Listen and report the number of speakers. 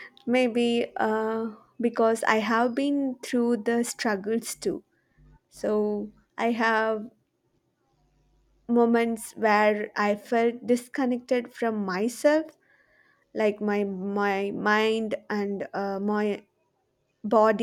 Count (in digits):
1